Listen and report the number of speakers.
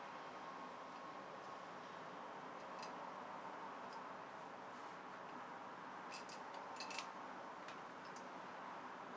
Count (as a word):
zero